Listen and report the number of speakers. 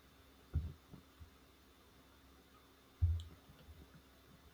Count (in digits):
0